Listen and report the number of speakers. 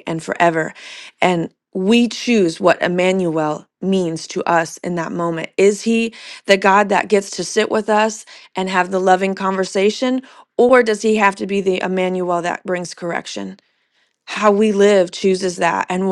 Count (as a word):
one